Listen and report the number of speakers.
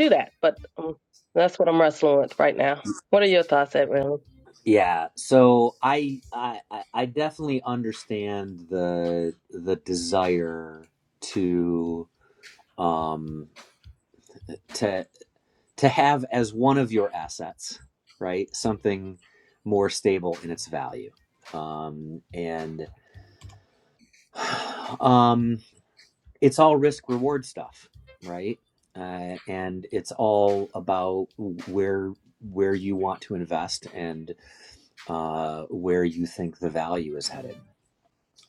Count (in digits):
2